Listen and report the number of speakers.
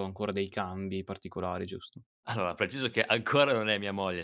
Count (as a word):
two